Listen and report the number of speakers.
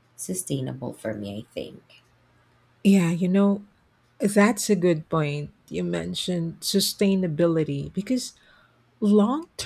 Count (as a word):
two